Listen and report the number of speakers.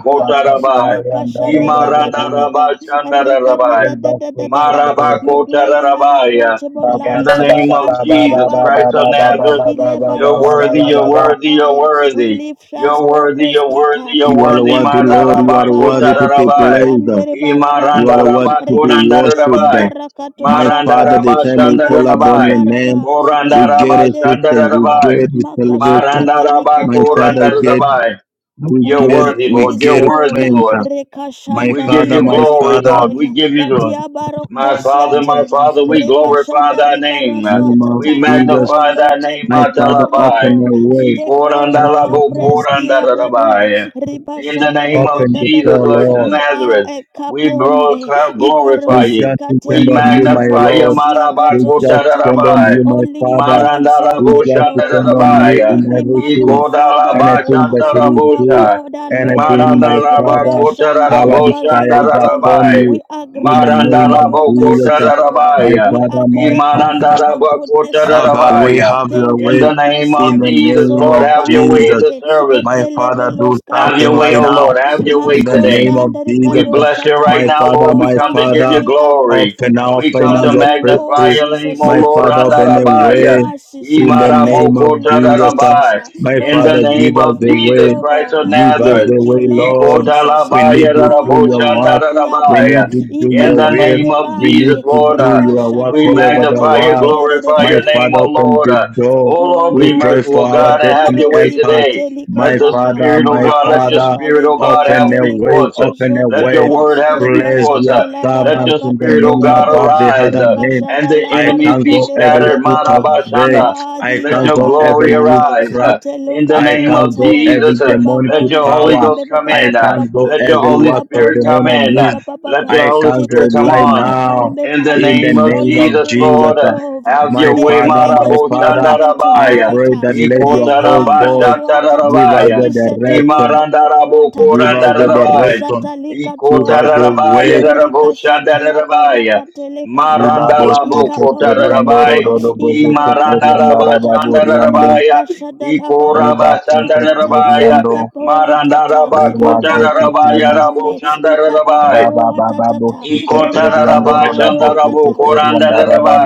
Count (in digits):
3